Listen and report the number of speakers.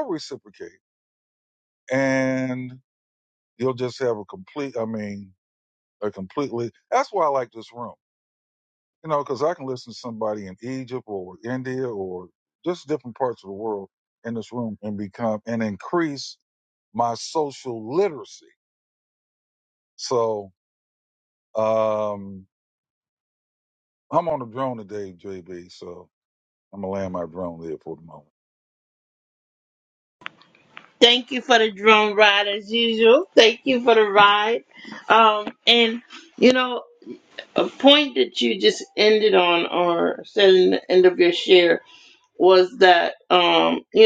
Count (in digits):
2